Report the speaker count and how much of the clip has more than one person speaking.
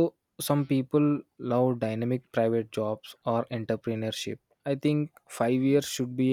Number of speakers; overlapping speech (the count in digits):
1, no overlap